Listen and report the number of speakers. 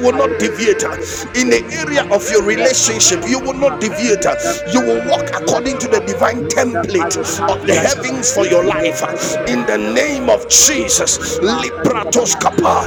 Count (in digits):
2